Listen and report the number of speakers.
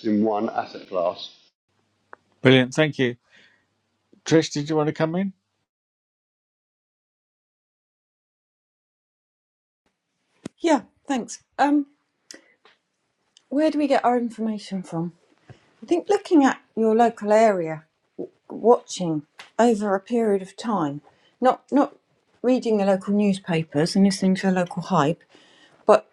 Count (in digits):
3